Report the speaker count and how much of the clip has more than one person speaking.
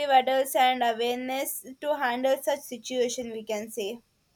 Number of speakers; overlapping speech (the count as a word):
one, no overlap